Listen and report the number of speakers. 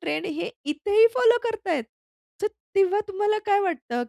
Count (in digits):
1